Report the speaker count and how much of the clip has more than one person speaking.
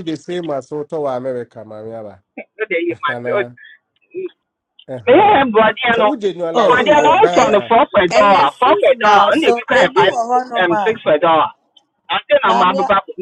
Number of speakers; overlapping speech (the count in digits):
3, about 34%